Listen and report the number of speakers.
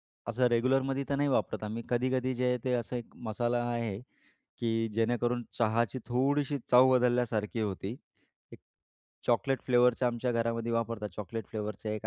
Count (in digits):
1